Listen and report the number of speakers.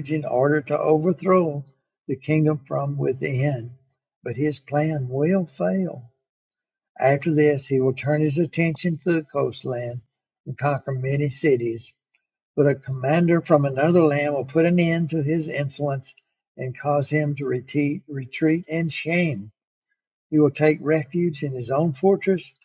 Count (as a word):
one